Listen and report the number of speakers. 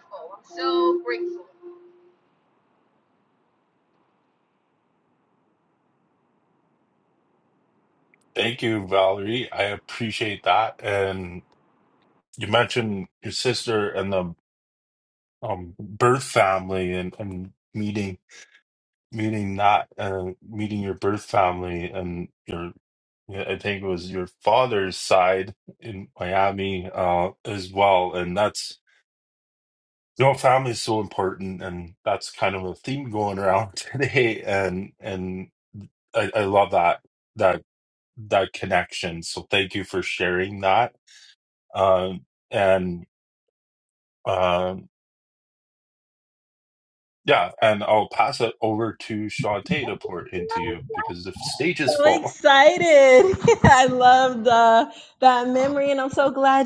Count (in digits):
3